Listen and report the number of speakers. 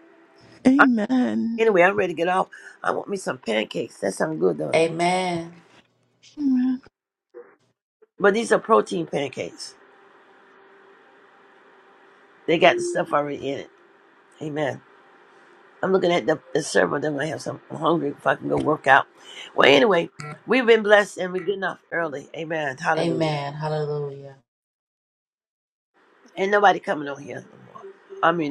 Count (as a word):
three